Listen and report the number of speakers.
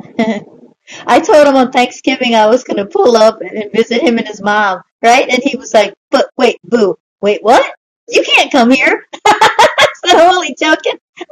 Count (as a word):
one